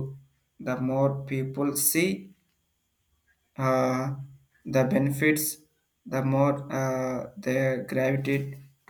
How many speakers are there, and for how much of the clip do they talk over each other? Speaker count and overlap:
one, no overlap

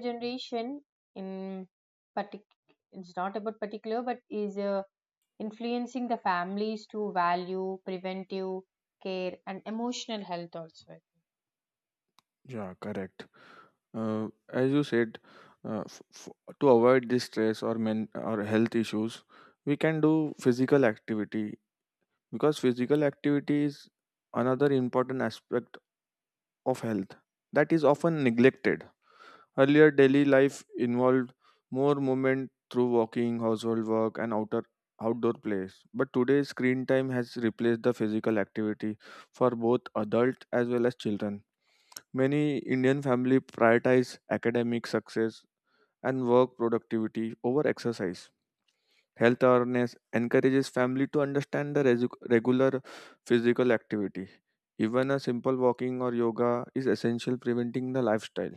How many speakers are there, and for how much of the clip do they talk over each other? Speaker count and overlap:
two, no overlap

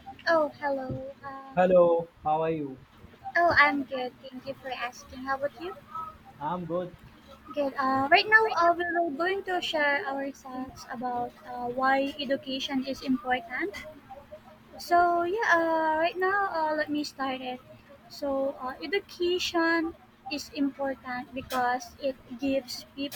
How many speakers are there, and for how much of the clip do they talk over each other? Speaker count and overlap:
two, no overlap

